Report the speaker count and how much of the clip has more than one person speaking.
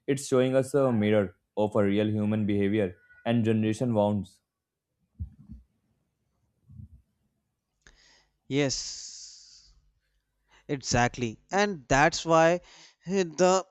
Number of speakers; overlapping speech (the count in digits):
2, no overlap